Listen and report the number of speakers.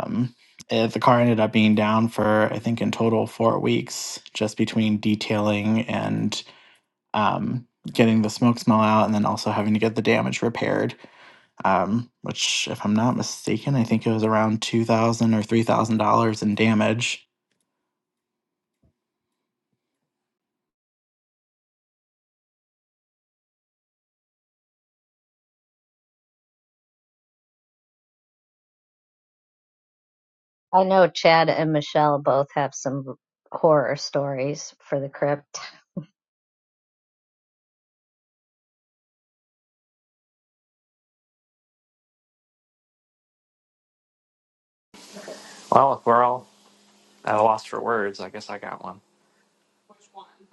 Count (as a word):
three